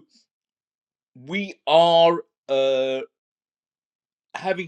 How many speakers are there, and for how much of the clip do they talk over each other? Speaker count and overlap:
one, no overlap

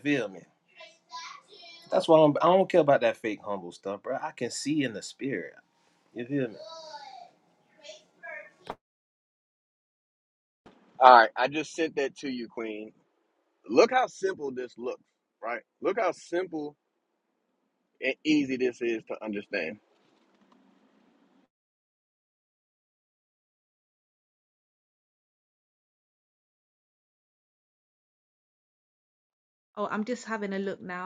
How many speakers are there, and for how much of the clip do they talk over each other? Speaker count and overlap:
three, no overlap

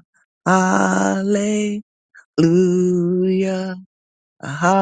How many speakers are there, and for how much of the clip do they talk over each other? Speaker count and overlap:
one, no overlap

